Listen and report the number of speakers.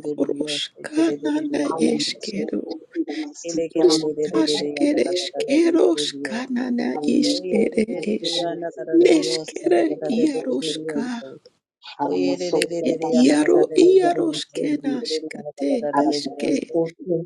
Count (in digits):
3